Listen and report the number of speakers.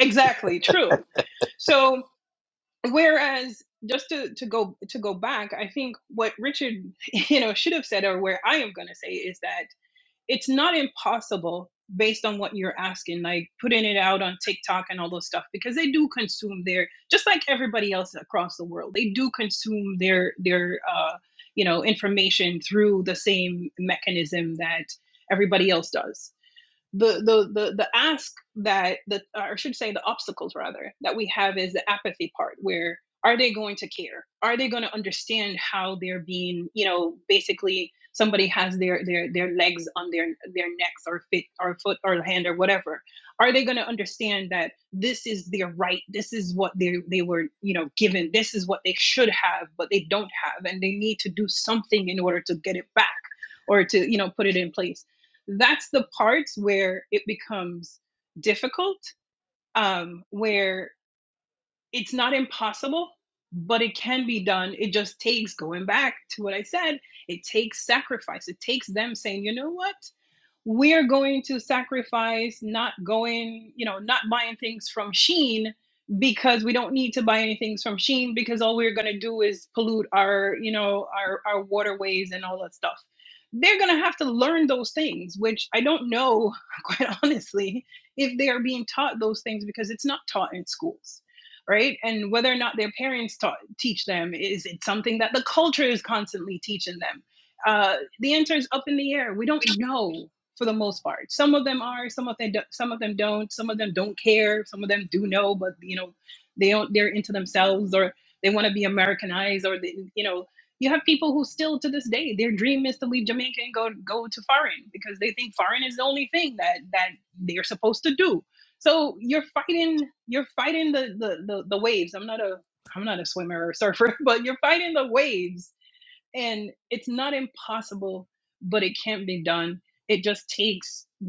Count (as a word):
one